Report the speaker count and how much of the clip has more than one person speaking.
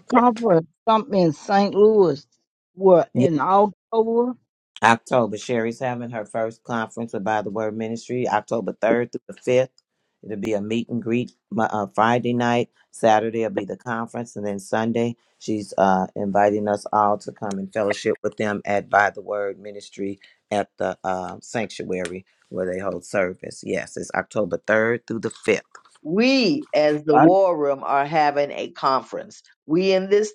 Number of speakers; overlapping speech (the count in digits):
3, about 1%